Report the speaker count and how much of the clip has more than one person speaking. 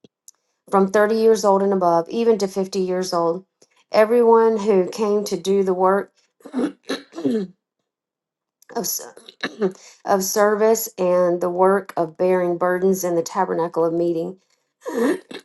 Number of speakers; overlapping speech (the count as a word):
one, no overlap